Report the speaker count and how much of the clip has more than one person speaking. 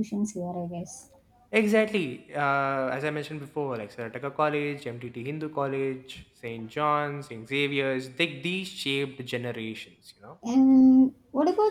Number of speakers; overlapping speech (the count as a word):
two, no overlap